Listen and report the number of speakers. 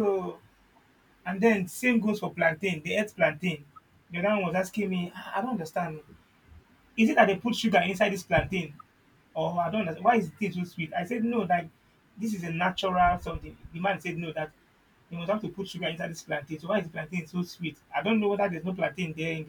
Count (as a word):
one